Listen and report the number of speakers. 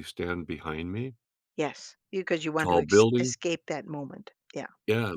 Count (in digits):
2